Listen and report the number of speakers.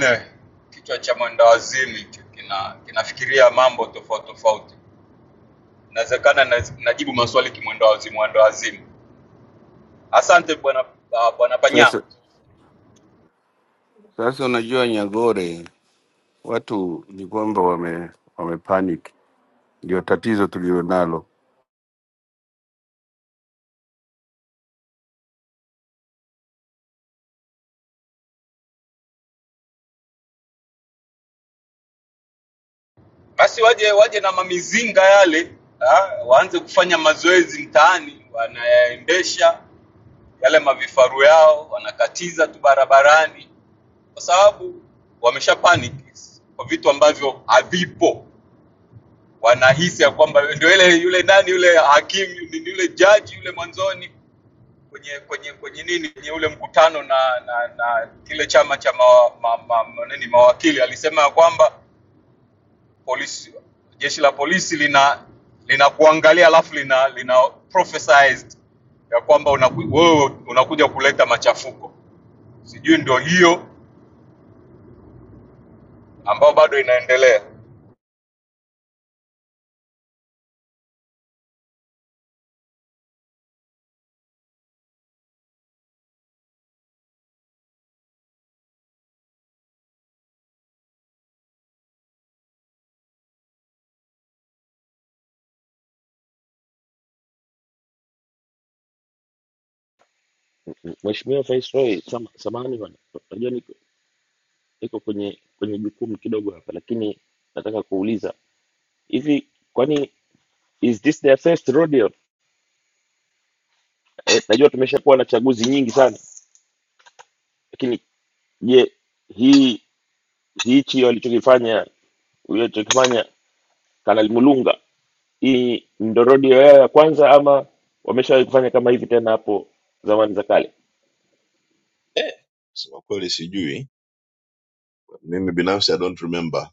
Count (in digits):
4